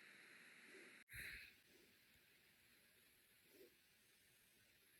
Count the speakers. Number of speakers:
0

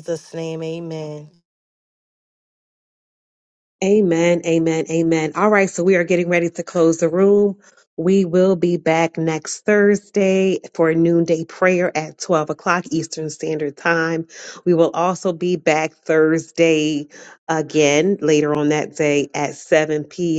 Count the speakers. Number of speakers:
2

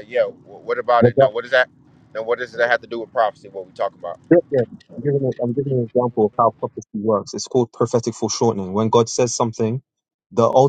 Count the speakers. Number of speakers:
2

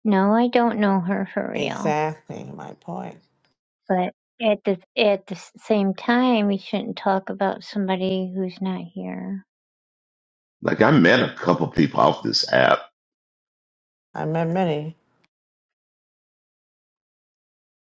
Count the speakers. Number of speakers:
3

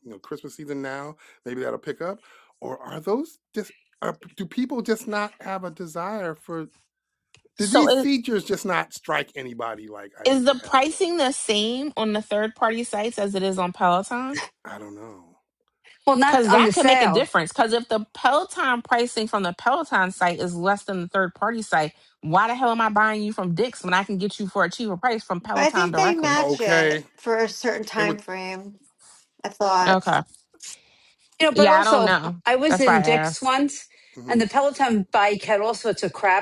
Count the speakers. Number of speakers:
4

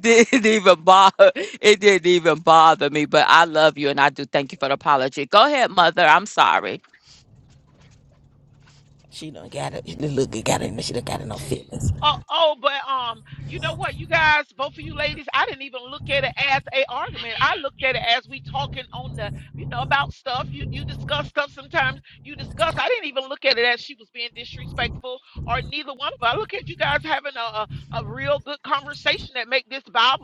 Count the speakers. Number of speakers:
3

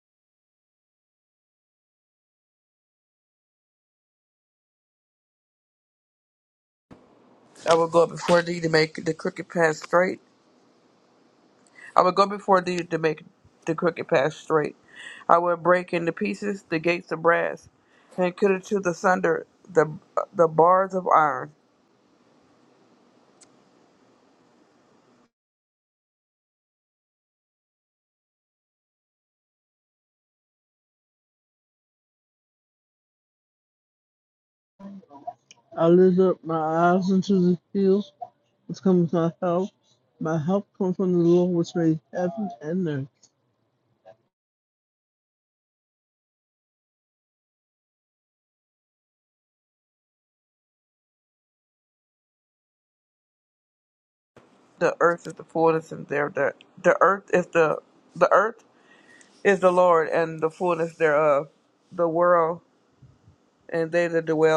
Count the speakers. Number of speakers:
2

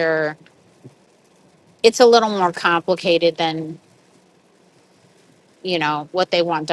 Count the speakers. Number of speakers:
1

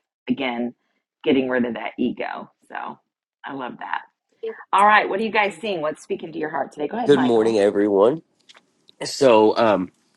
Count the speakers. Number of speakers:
2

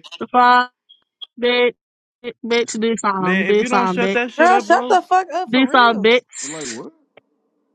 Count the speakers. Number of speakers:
3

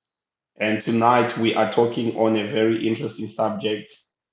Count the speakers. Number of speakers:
1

